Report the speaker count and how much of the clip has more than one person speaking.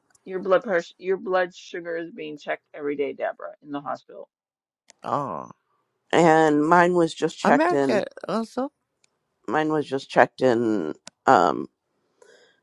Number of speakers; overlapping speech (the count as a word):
three, about 5%